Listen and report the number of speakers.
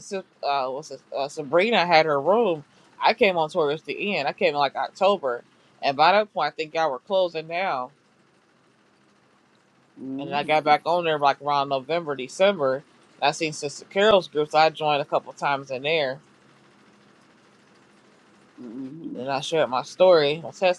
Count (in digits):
2